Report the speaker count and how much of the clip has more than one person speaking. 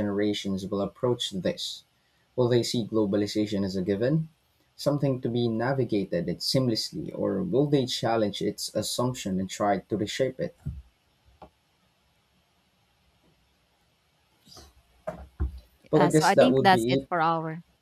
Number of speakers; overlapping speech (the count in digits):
2, about 6%